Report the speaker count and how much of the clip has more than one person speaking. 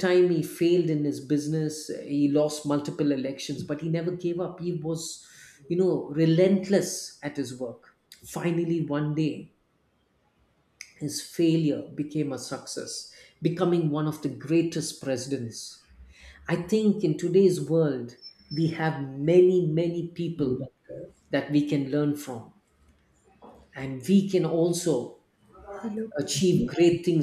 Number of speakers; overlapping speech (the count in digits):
1, no overlap